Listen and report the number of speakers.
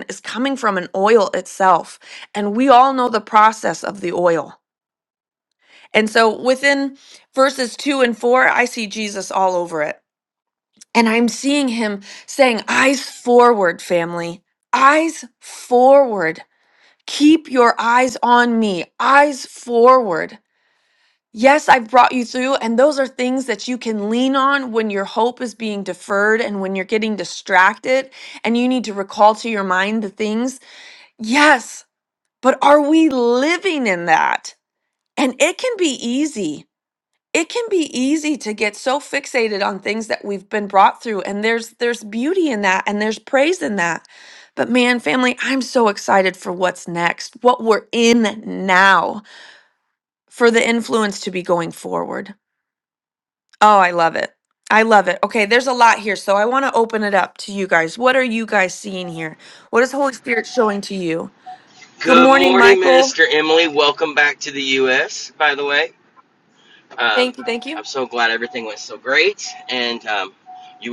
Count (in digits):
2